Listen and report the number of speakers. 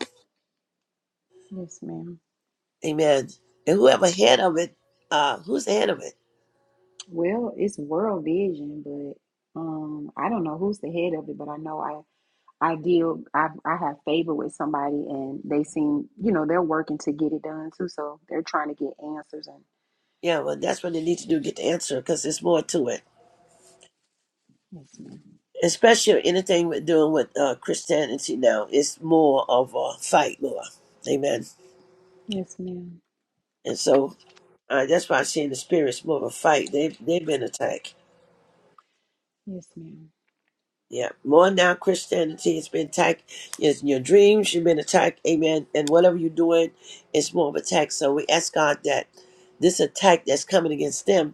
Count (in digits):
2